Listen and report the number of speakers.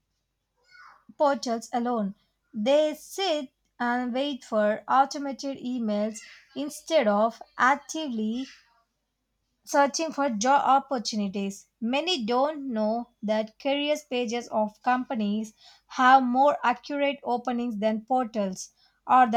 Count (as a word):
one